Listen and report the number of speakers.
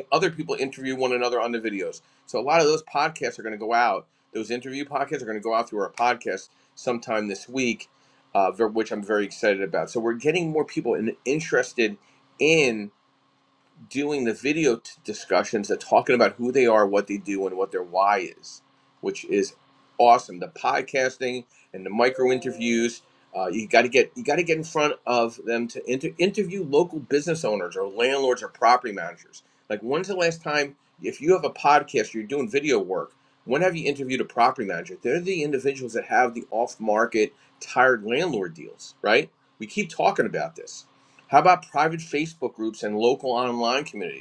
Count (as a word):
one